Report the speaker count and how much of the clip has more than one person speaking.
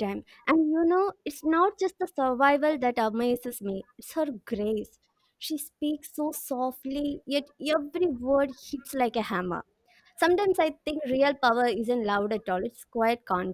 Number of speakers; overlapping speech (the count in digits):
1, no overlap